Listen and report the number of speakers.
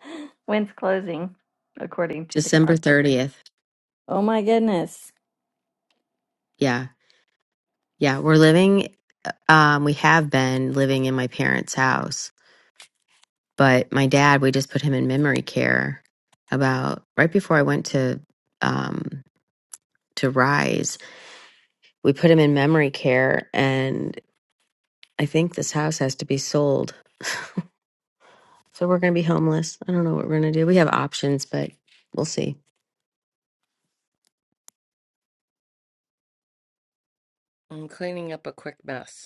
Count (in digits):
3